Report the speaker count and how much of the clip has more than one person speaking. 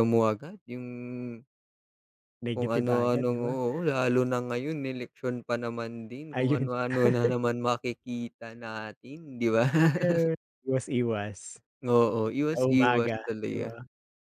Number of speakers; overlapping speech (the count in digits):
2, about 18%